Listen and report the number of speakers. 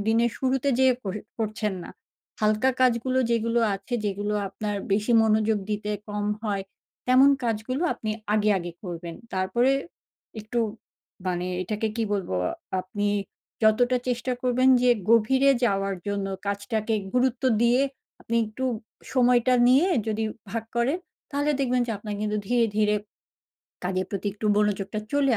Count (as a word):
one